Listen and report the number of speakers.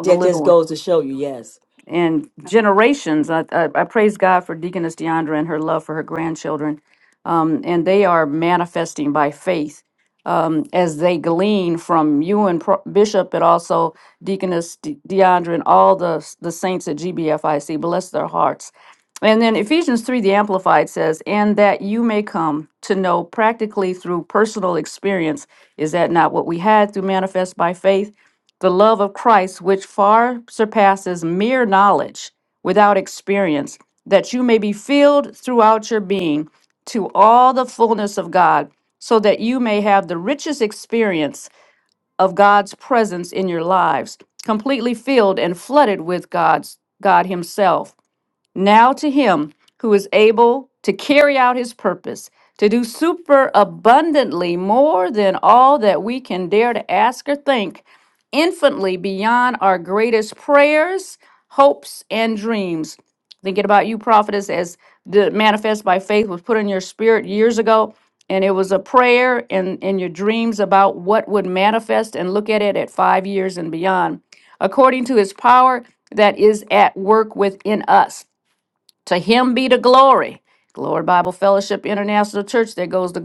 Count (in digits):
2